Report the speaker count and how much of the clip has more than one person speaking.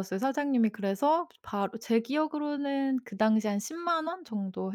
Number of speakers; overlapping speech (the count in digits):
1, no overlap